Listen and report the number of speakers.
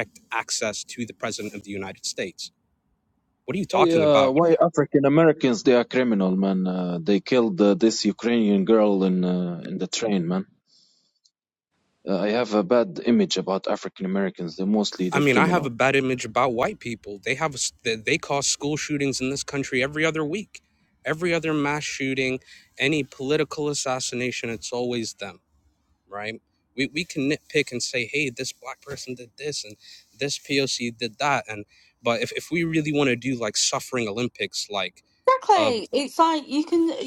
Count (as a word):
three